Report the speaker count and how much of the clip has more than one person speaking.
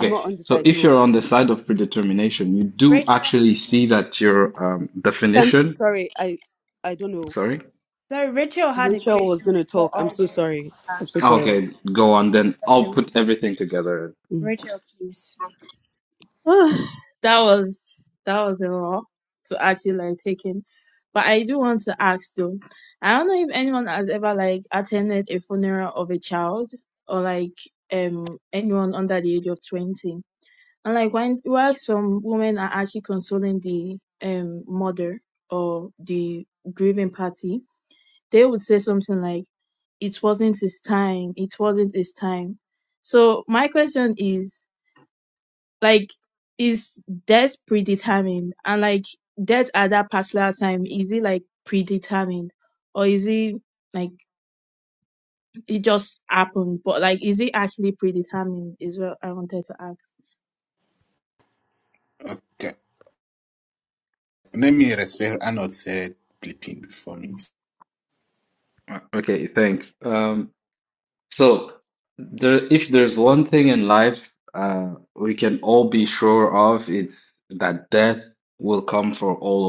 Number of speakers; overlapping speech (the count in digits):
5, about 7%